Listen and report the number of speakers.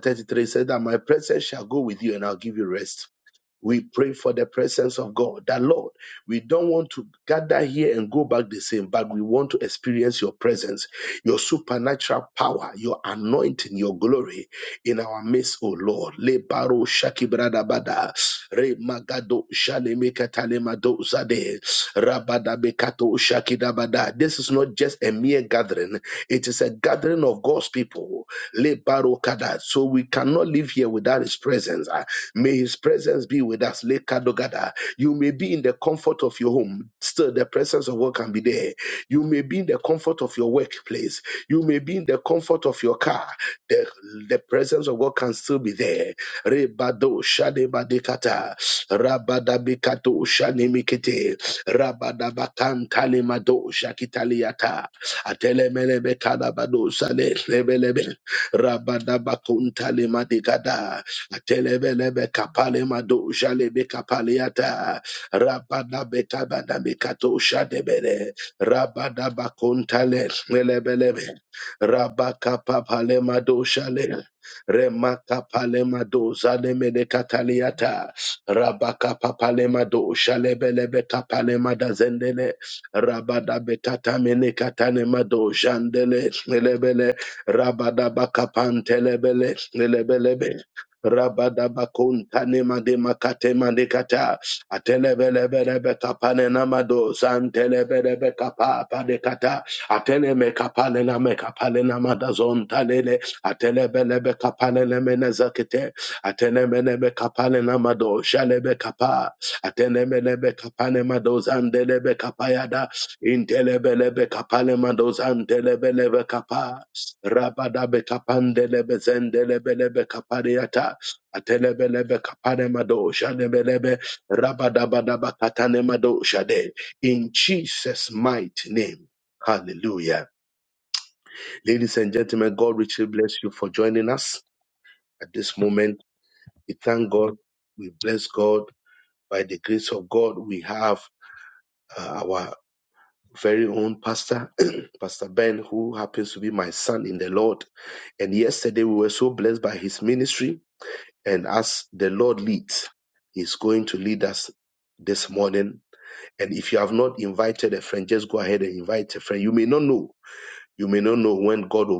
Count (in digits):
1